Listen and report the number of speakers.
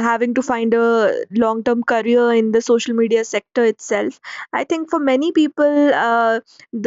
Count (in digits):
1